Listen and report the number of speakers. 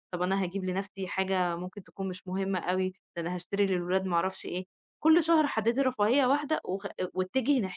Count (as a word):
one